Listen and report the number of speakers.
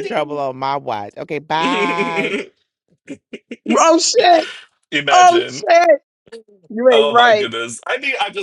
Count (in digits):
3